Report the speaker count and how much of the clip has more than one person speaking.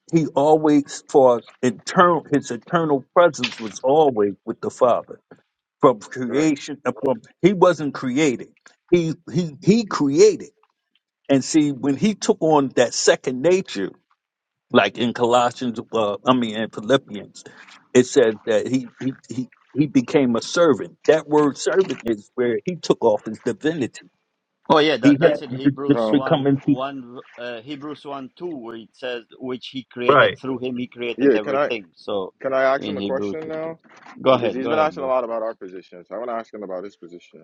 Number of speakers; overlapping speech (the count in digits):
3, about 12%